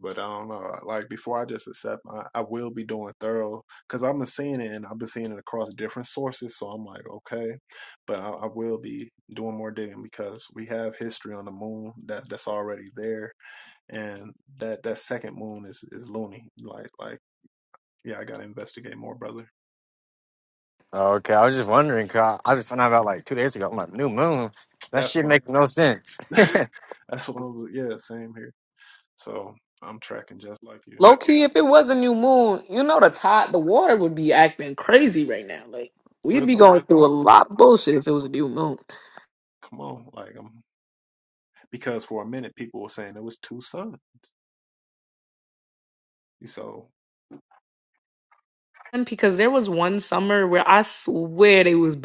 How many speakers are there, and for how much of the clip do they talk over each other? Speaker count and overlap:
3, about 2%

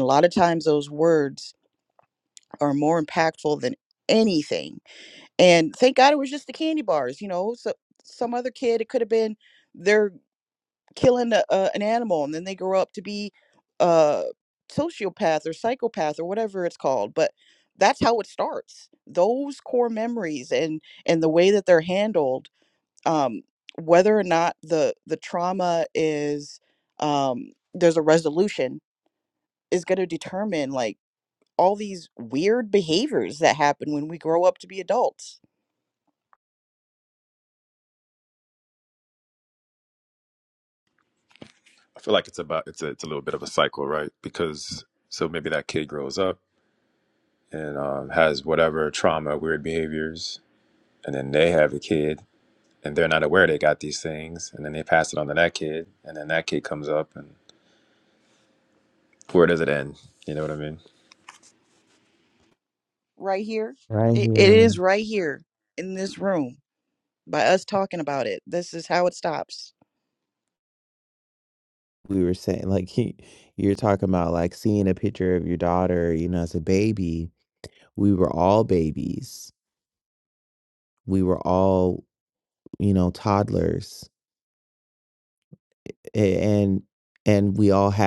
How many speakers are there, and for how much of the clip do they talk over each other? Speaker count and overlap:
3, about 1%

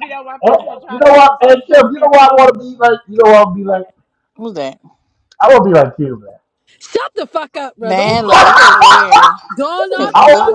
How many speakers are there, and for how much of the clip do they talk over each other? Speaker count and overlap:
4, about 27%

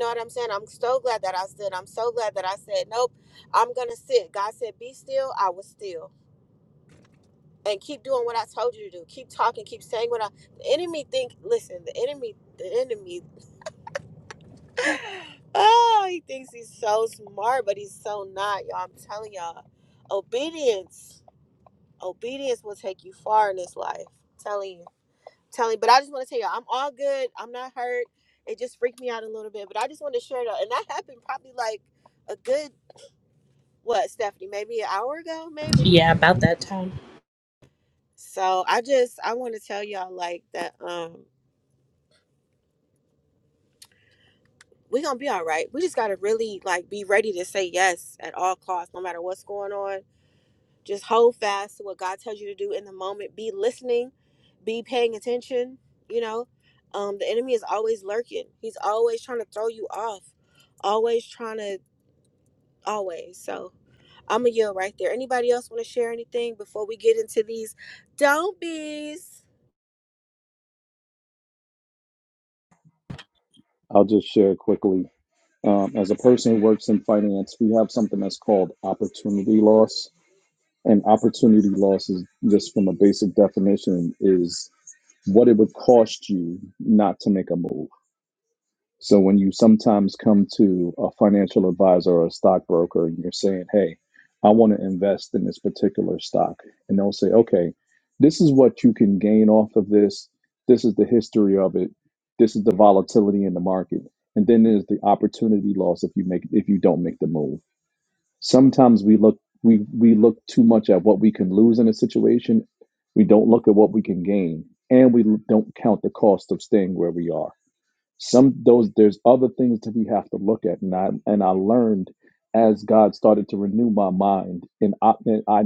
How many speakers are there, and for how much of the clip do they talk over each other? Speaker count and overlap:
3, under 1%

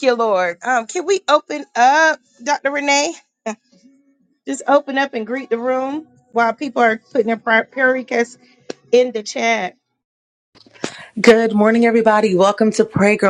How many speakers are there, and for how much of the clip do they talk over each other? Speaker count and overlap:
2, no overlap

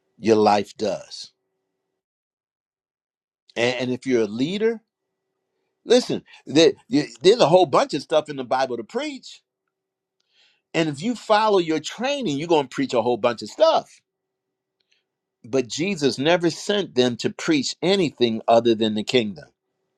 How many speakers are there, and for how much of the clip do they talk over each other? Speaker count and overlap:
1, no overlap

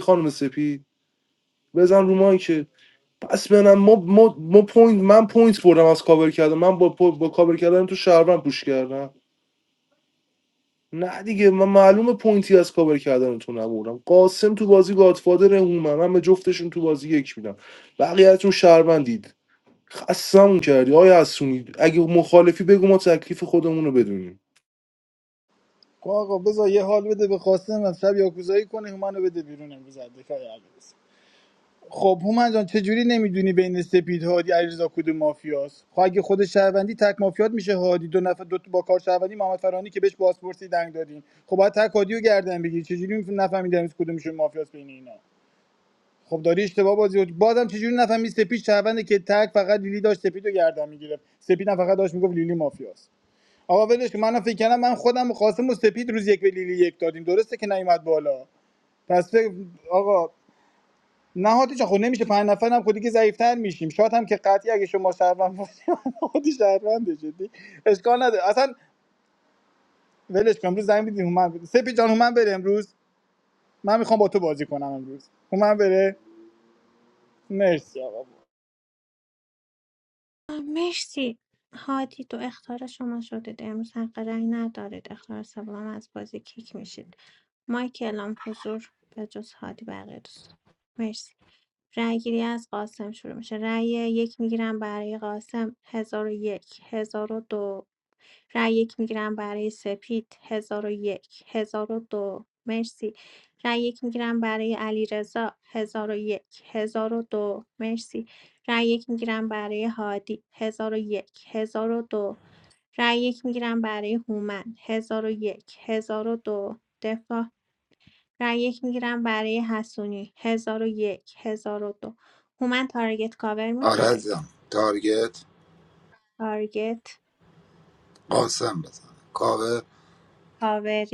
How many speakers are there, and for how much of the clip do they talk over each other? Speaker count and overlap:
4, under 1%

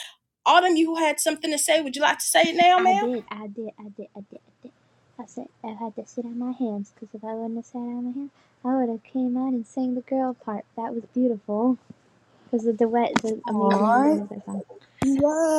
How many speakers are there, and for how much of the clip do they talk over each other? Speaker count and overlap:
3, about 7%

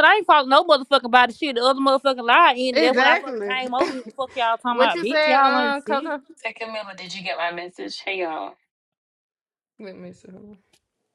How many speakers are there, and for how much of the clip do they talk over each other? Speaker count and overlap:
3, about 20%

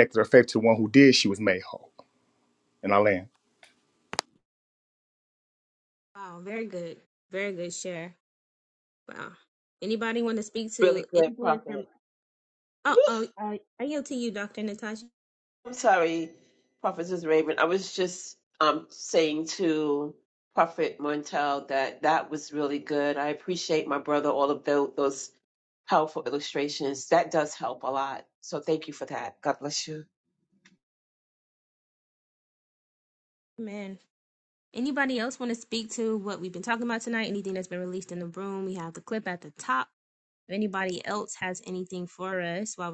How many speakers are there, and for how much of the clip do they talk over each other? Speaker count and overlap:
3, about 3%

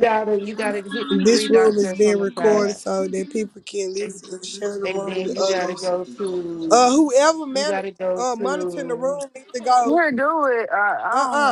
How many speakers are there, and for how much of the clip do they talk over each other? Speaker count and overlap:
3, about 42%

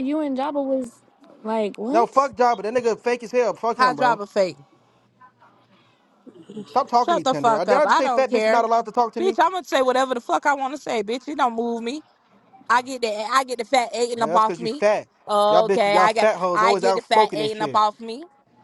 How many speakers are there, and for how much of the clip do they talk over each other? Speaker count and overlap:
3, about 28%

